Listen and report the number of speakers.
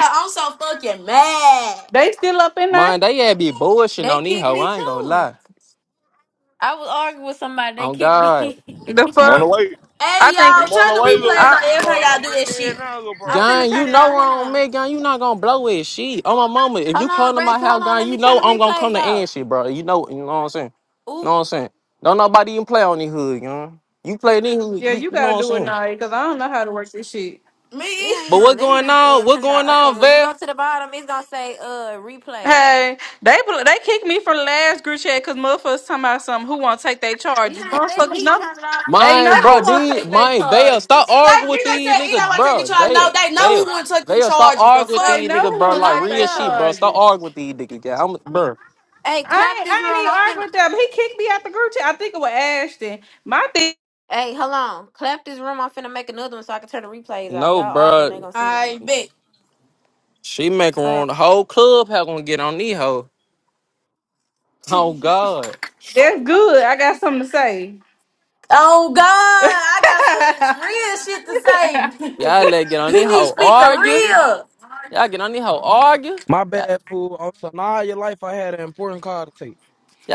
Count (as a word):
six